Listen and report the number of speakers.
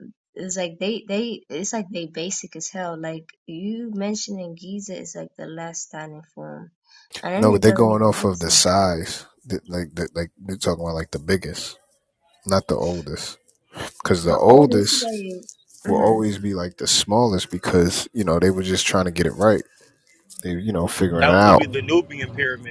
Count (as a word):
three